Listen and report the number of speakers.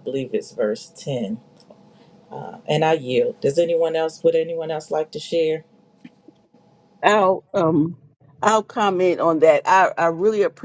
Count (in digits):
2